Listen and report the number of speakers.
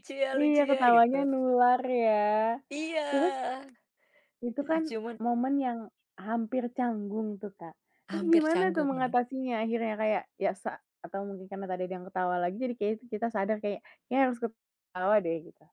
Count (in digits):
2